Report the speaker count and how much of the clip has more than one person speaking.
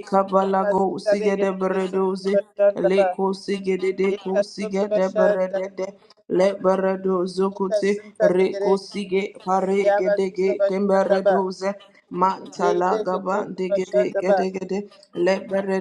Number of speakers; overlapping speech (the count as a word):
two, about 51%